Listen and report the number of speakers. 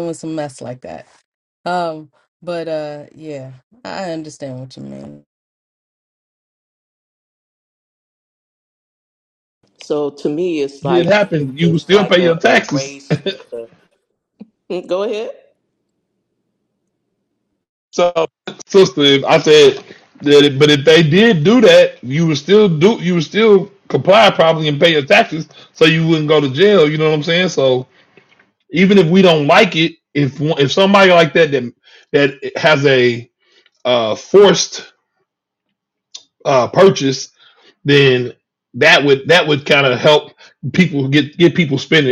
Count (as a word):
three